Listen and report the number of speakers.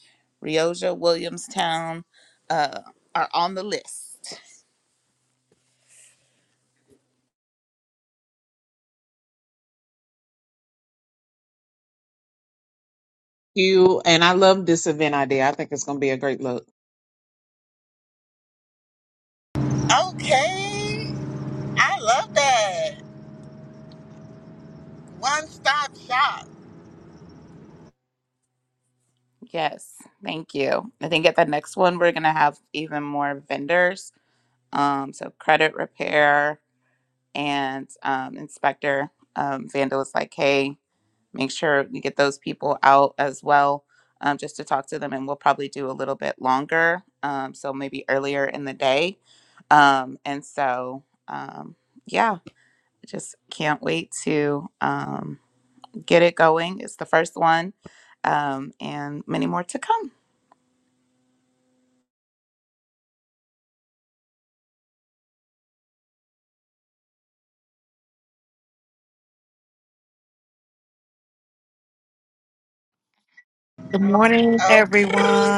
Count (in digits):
4